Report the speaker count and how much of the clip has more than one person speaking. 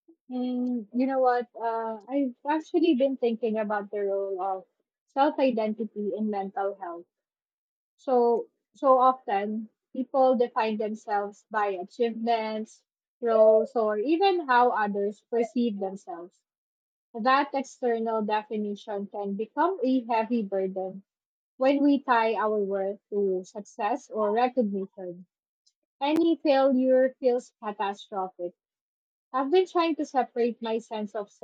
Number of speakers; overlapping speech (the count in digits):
1, no overlap